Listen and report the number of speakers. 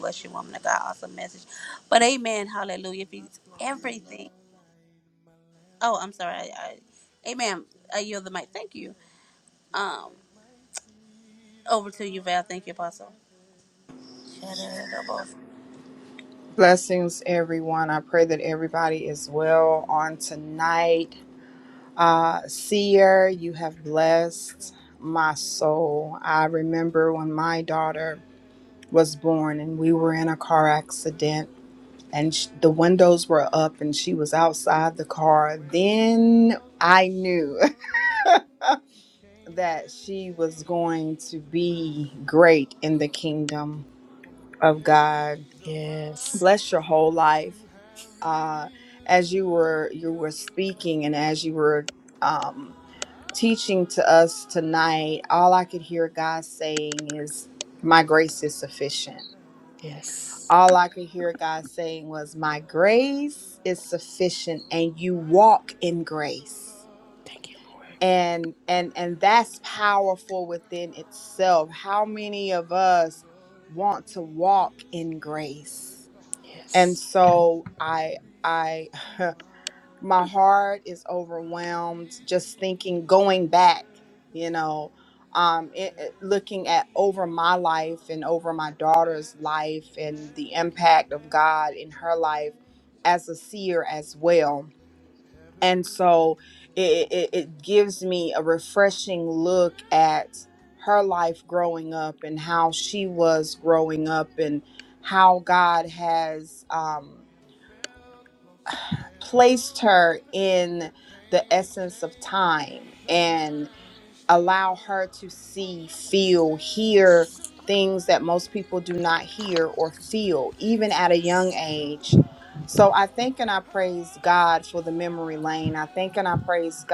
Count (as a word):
three